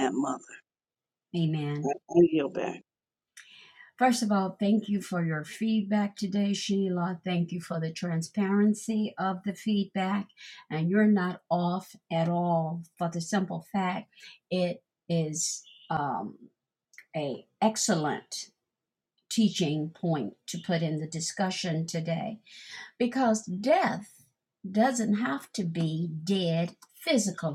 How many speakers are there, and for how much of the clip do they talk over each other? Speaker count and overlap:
2, under 1%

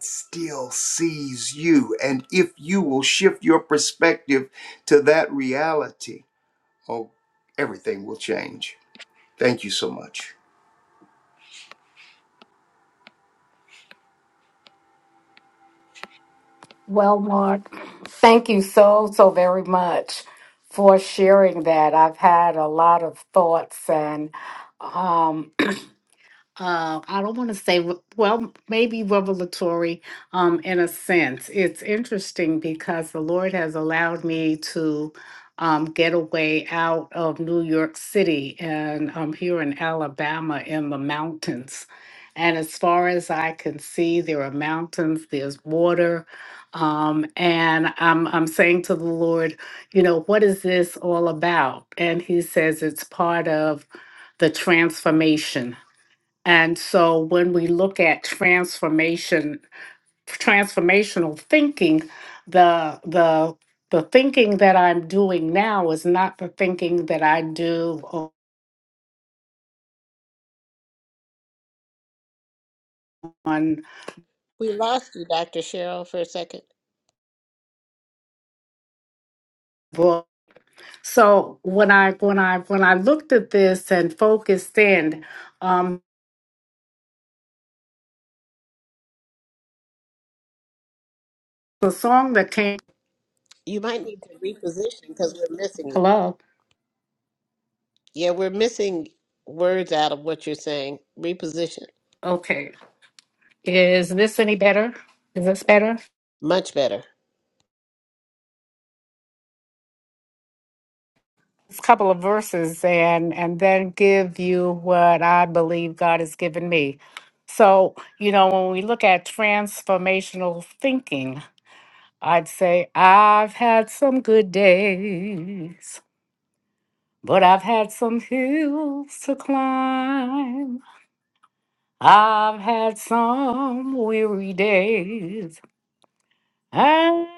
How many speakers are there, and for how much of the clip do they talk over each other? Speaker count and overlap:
3, under 1%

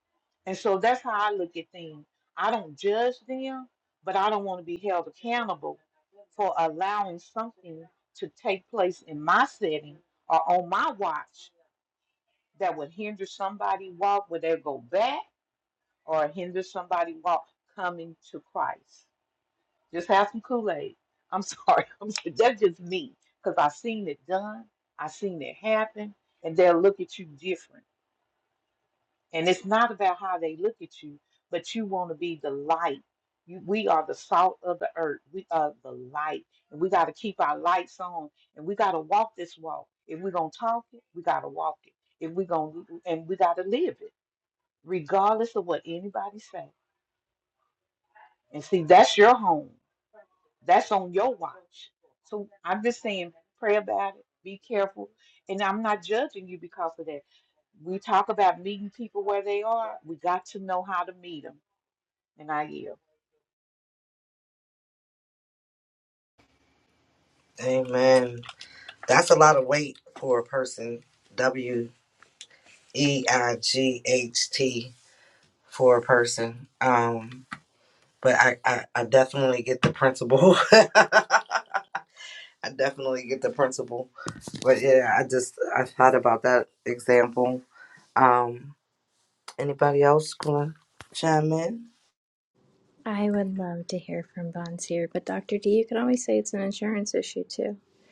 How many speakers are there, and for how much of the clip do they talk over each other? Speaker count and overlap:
3, no overlap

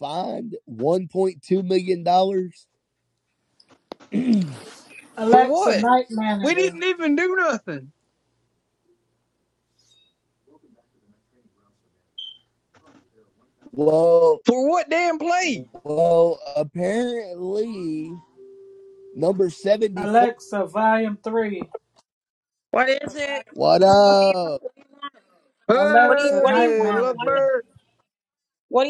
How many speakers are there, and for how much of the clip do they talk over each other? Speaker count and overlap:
4, about 12%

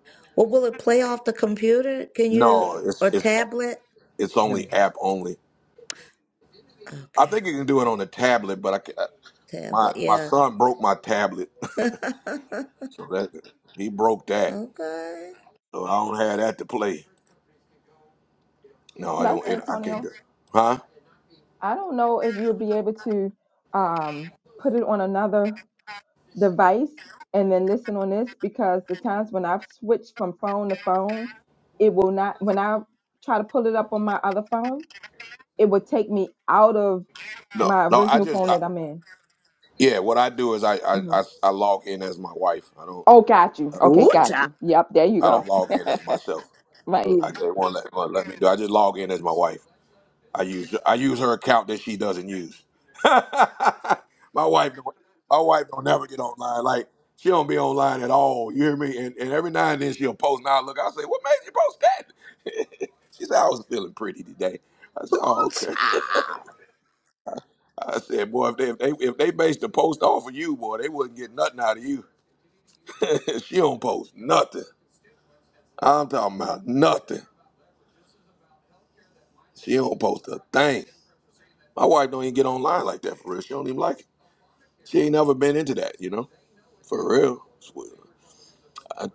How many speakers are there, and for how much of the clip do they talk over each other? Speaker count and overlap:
4, about 6%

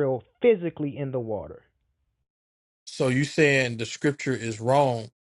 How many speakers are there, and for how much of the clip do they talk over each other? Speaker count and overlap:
2, no overlap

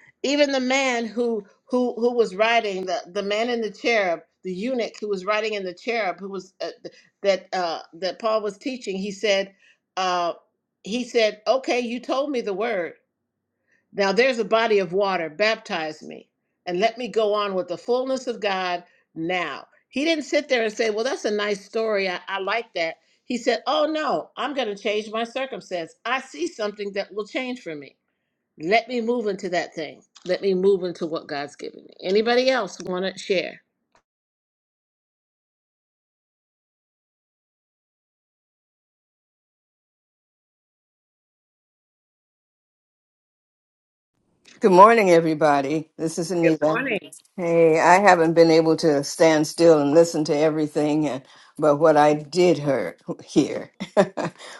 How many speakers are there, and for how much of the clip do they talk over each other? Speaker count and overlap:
2, about 1%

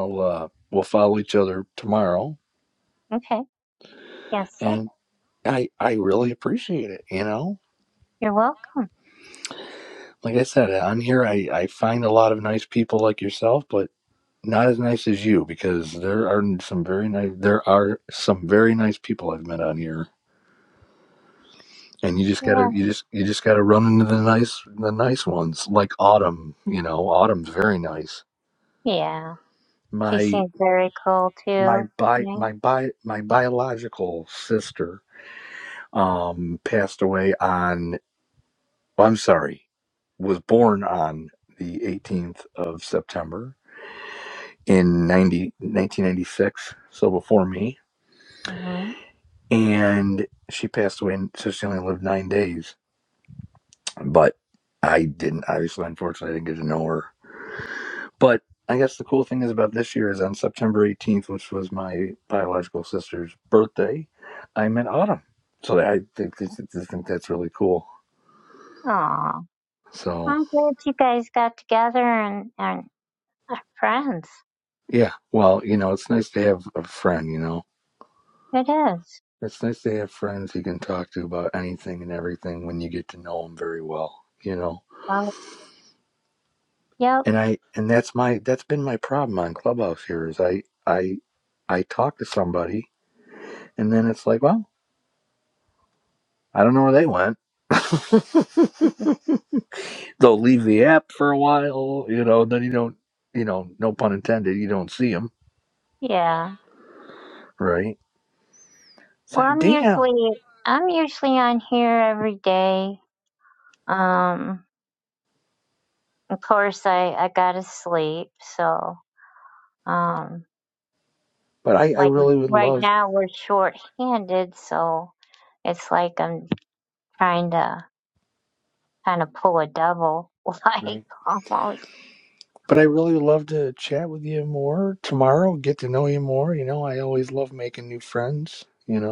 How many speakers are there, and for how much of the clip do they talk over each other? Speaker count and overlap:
2, about 2%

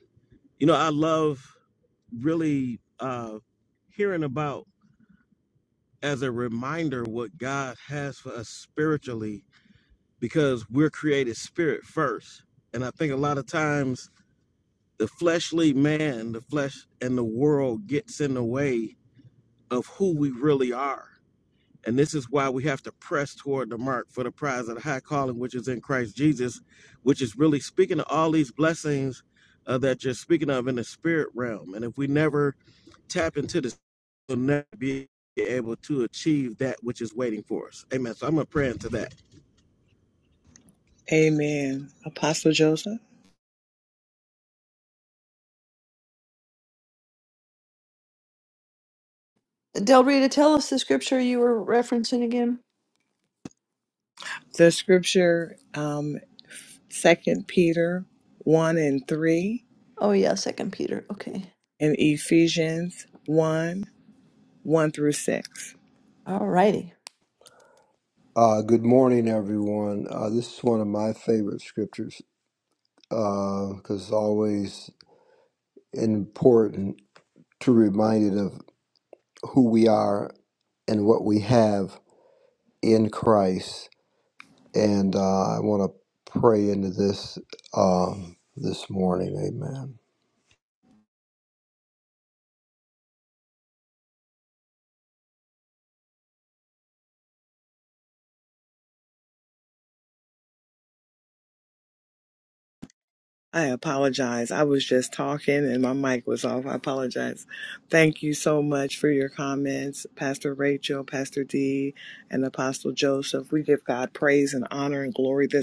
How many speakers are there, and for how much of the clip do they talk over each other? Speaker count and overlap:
4, no overlap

